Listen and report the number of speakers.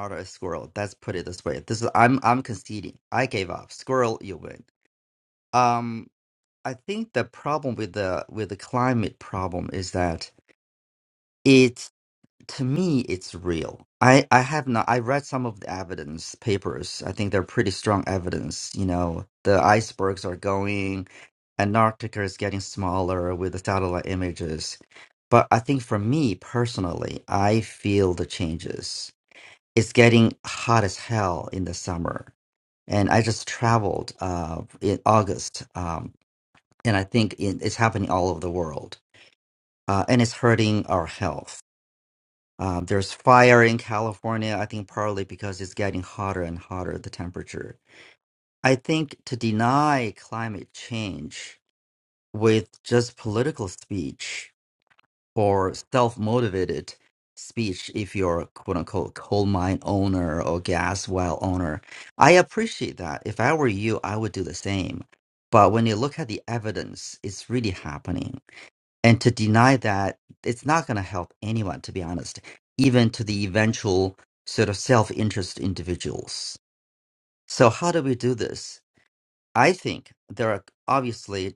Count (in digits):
1